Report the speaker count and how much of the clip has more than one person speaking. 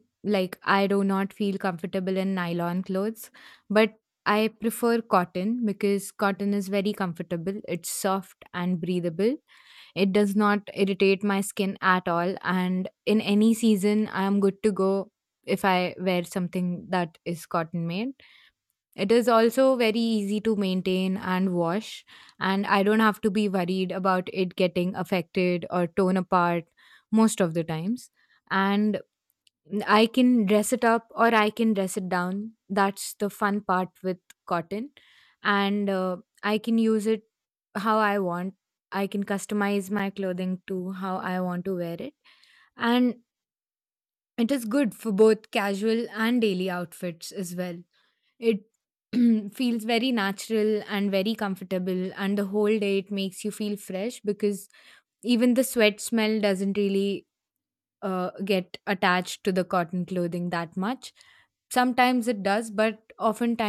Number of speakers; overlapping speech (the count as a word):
one, no overlap